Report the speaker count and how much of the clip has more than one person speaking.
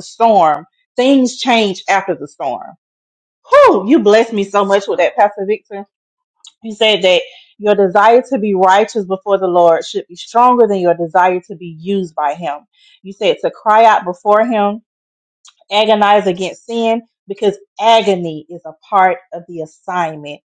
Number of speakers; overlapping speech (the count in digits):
1, no overlap